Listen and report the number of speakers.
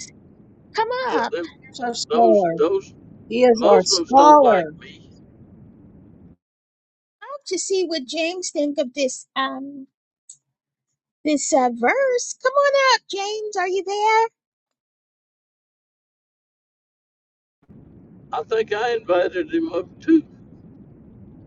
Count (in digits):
3